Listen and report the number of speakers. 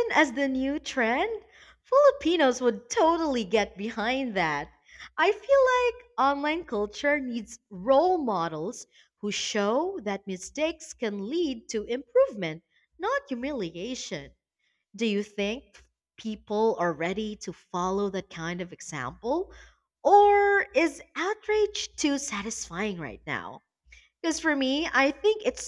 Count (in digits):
1